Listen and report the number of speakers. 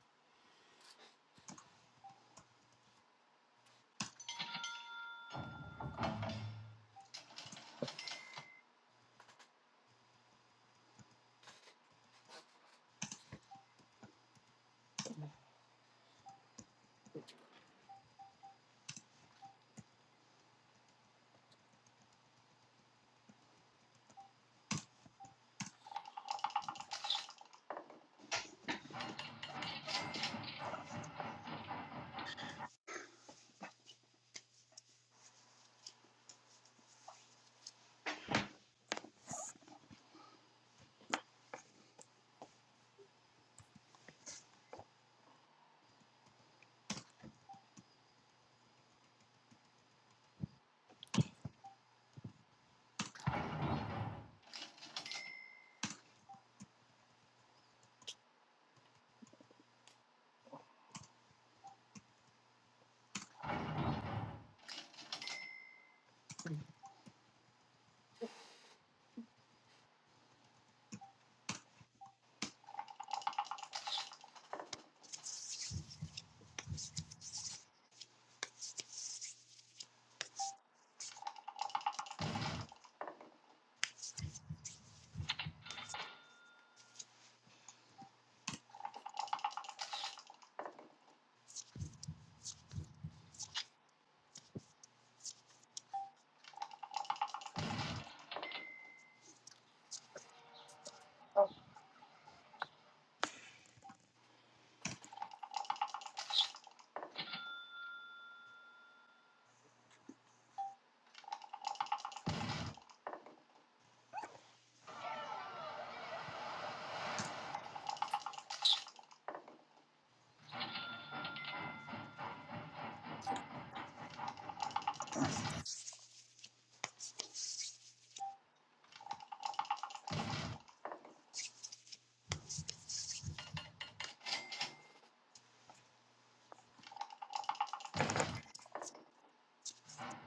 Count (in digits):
0